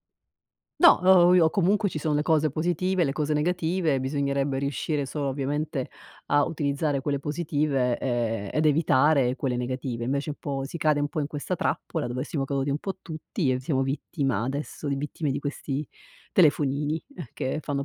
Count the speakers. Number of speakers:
1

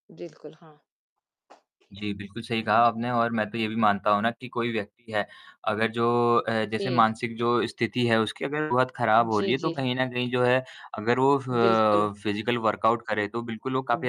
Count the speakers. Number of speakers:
2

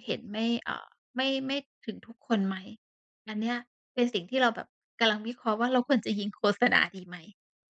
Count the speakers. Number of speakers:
1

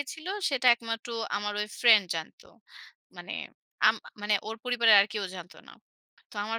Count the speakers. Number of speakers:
1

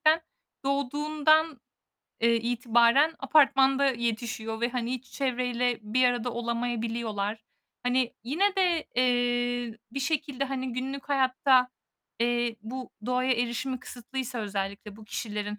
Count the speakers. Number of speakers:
1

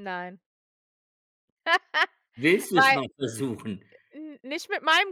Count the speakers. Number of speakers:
2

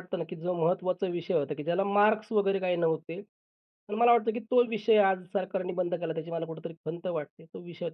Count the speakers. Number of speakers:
1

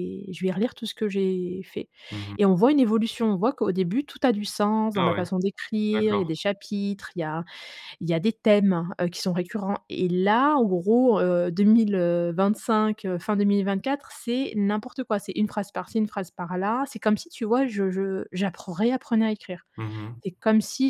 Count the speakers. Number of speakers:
2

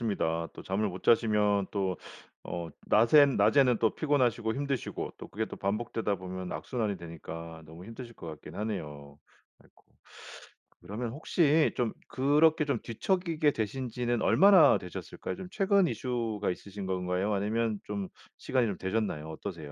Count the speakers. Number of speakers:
1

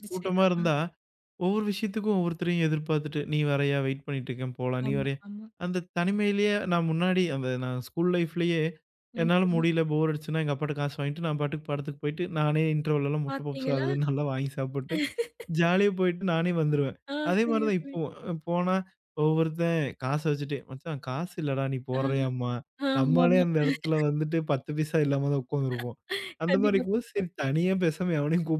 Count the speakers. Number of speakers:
2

